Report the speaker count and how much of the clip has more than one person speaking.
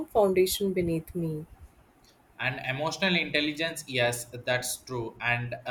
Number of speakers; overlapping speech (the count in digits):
2, no overlap